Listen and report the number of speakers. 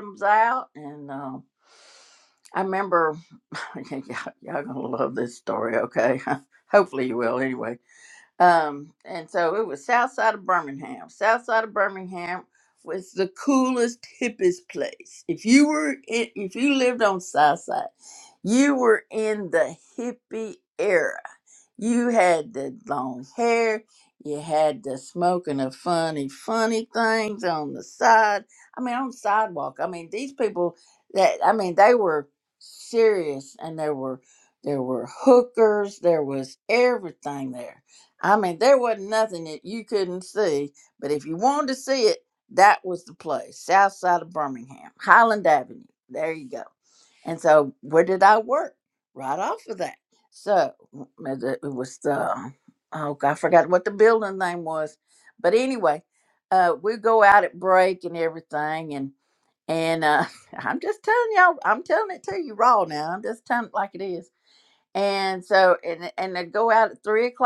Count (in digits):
1